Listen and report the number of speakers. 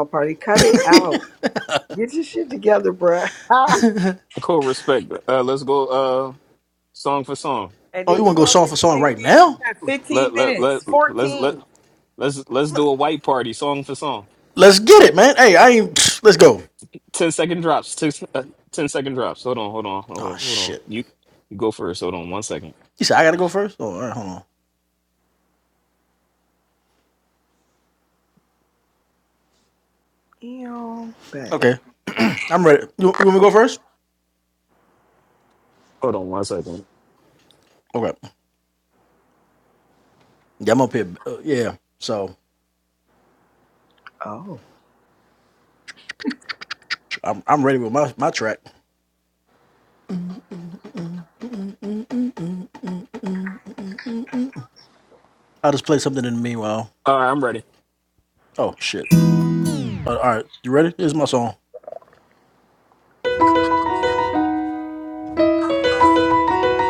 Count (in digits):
3